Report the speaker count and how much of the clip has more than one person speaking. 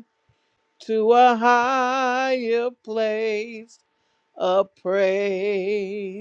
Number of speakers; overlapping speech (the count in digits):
1, no overlap